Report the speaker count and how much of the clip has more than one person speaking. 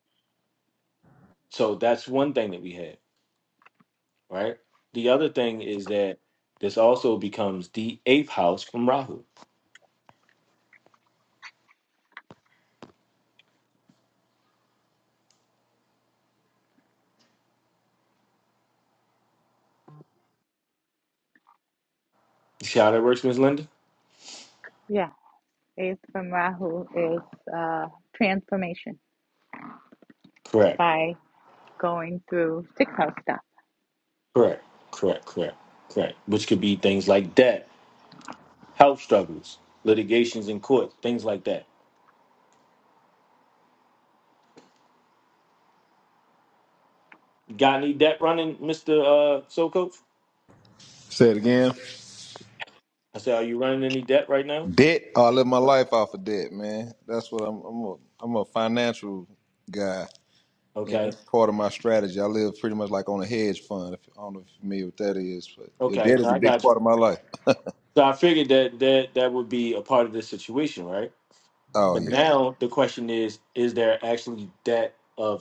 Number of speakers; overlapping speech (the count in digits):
3, about 2%